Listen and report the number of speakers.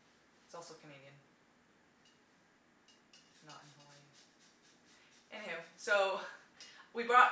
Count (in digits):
1